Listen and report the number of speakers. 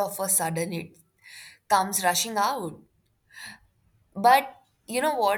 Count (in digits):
1